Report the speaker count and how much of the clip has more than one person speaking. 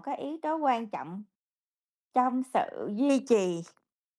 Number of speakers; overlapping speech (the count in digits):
1, no overlap